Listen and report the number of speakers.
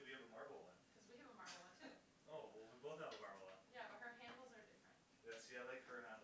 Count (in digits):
2